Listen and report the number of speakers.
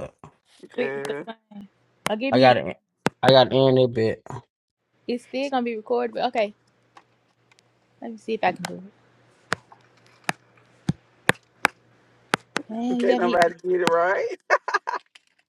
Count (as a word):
three